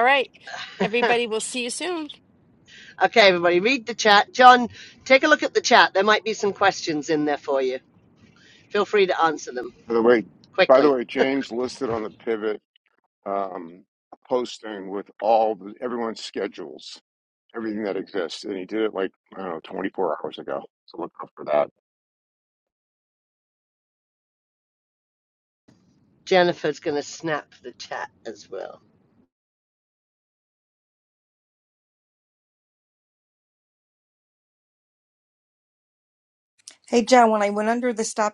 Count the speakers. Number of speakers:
4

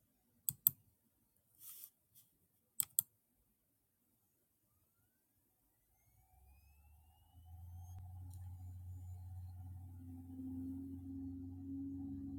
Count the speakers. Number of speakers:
0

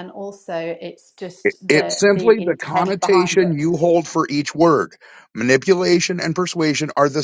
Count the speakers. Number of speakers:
2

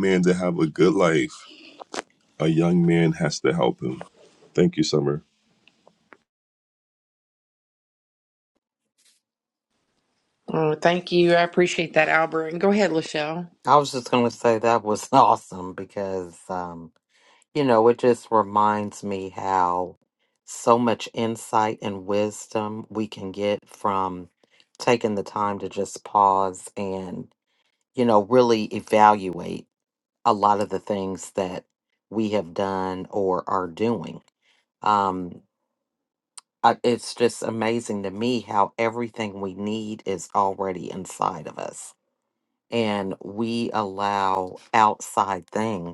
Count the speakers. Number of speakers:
3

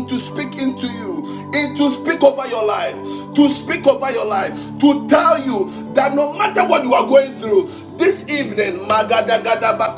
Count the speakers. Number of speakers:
1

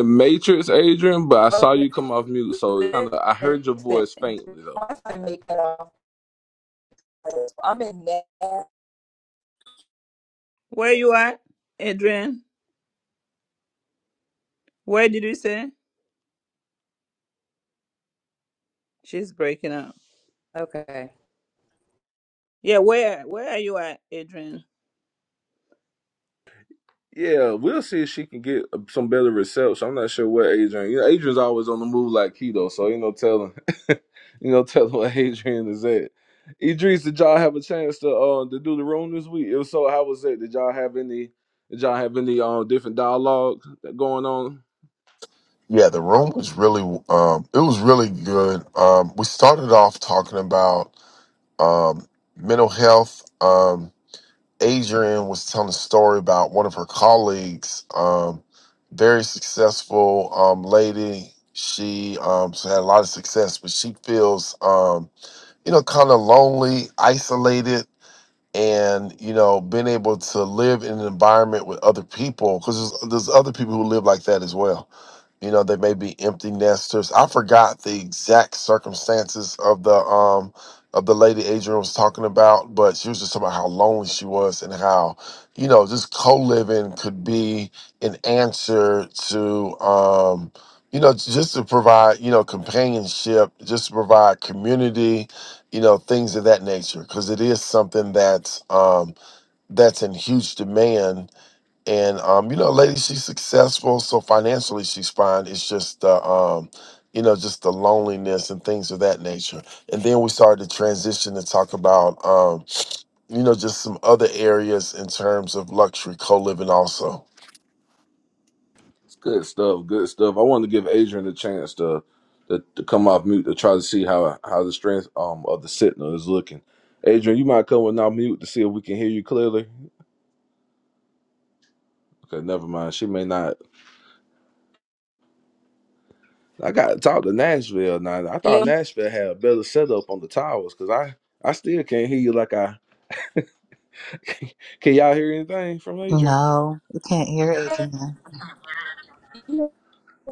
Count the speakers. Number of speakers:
5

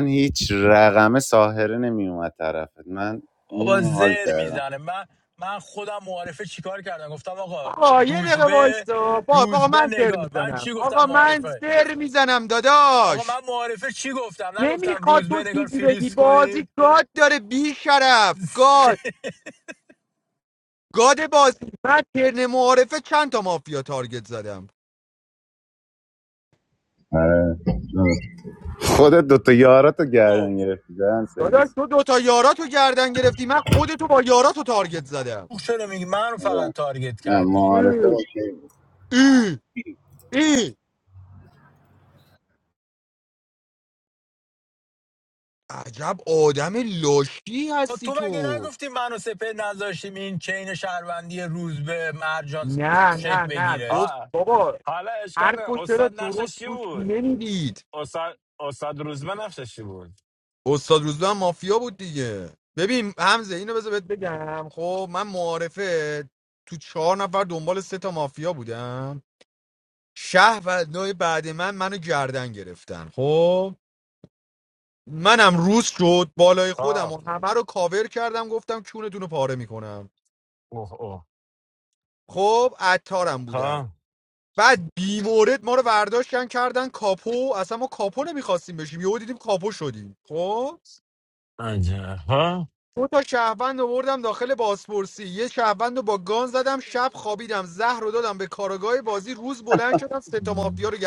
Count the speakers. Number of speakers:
4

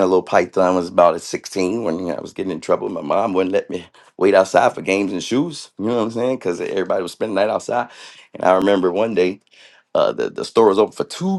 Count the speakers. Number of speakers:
1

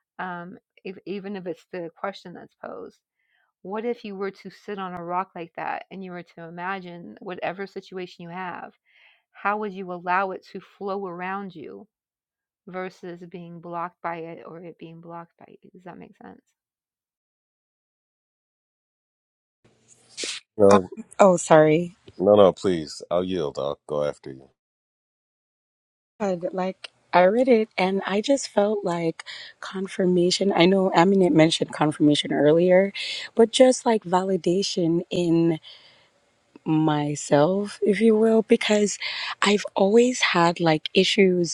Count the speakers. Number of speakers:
3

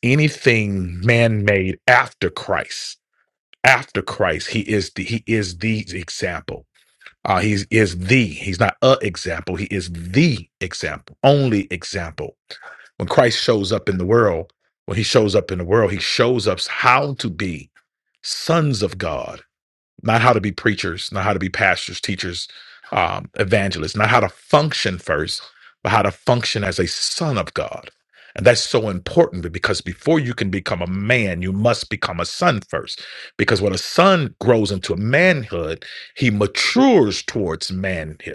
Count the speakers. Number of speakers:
1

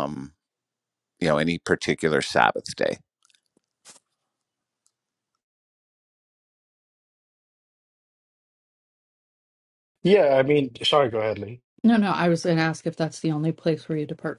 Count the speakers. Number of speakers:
3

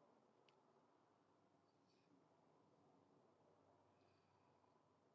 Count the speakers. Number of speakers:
0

